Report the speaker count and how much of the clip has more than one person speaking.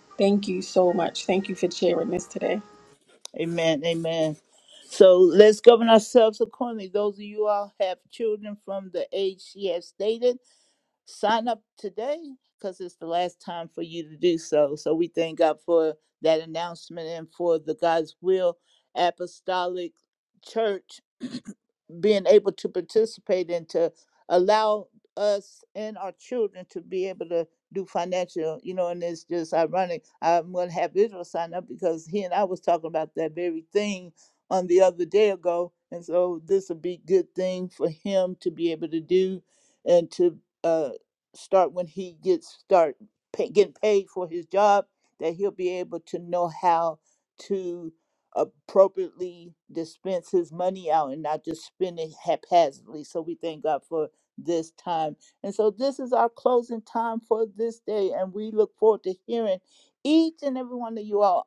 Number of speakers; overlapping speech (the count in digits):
2, no overlap